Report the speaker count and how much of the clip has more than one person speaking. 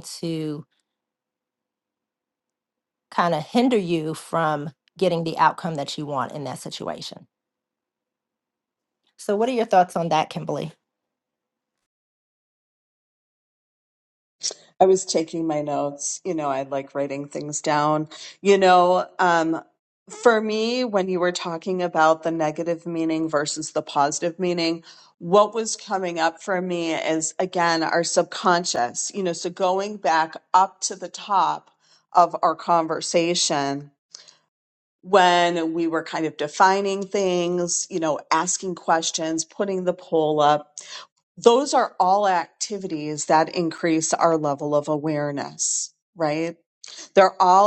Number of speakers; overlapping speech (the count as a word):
two, no overlap